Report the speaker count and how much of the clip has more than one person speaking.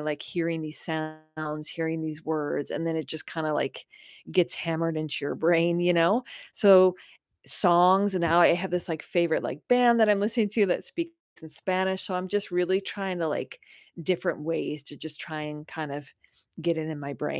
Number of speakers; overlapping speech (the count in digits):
1, no overlap